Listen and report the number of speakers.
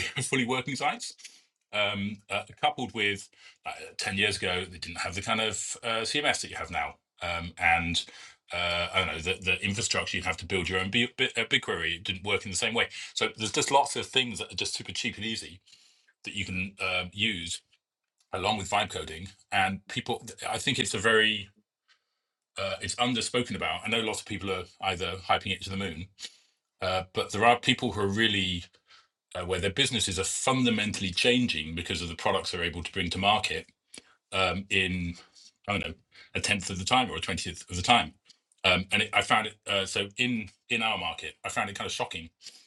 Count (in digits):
1